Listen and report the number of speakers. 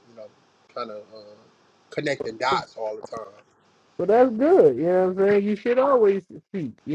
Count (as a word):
two